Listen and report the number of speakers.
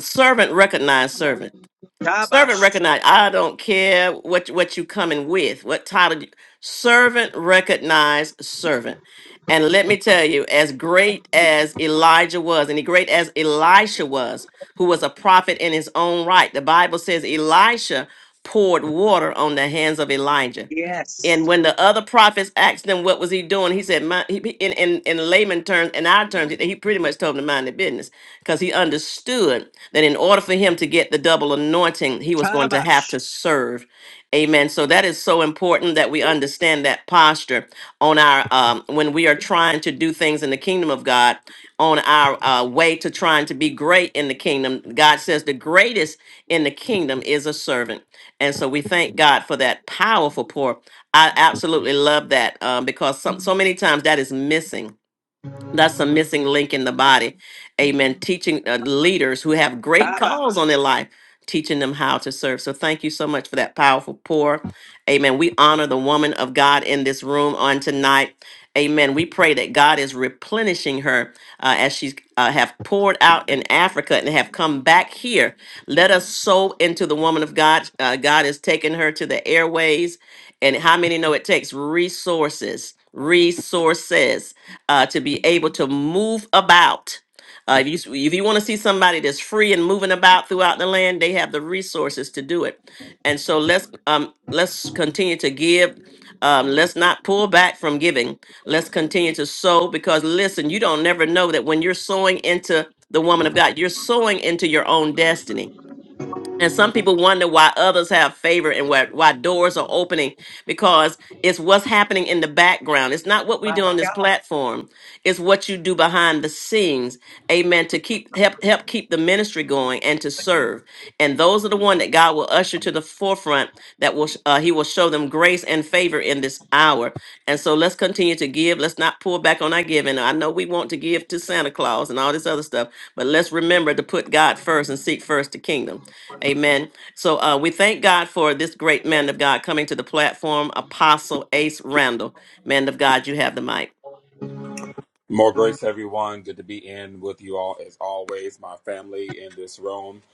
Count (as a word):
three